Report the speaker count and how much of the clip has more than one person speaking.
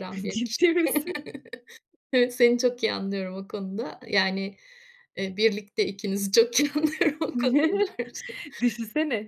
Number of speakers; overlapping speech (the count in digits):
2, no overlap